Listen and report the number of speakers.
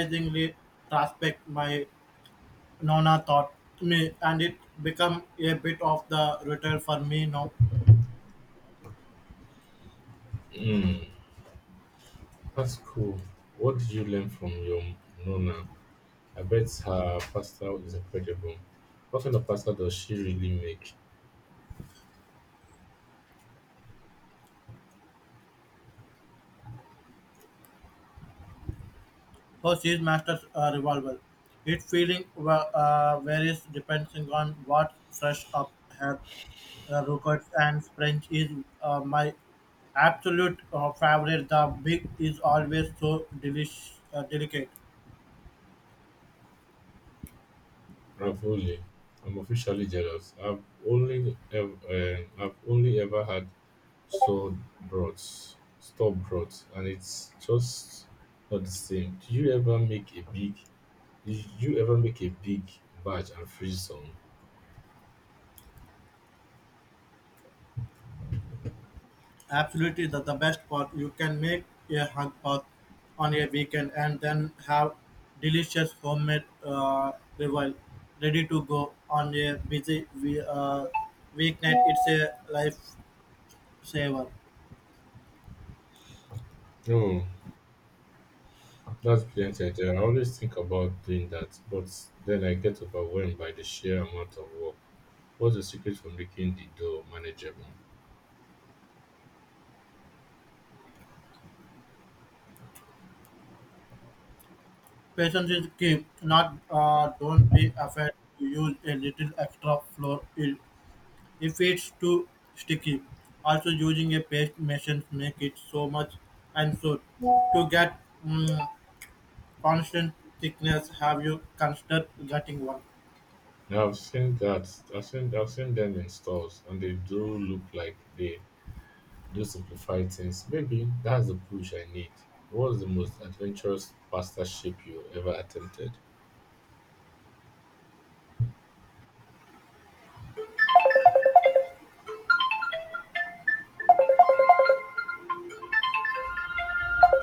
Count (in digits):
2